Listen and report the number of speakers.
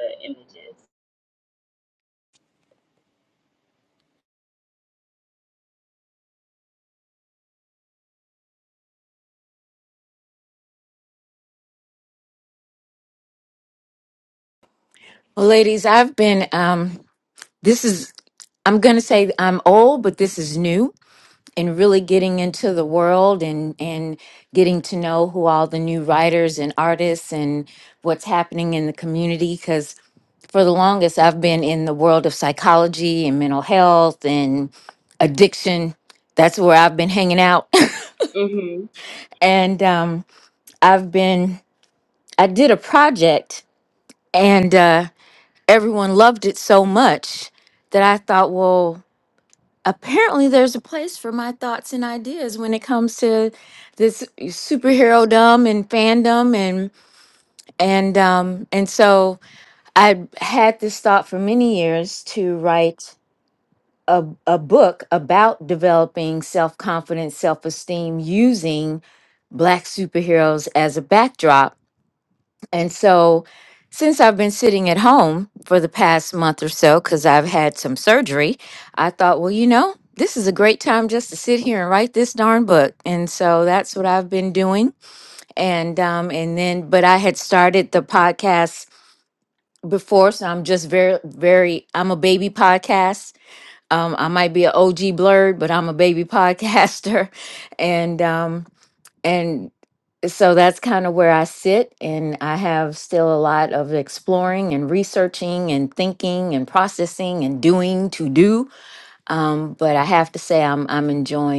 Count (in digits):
2